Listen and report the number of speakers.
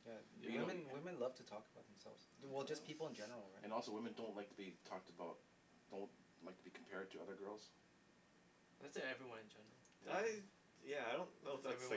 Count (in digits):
4